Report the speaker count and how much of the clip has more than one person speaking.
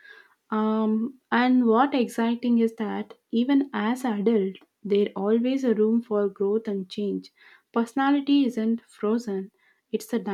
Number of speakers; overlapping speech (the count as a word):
one, no overlap